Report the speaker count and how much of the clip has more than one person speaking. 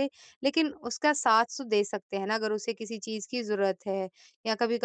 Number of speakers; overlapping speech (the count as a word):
one, no overlap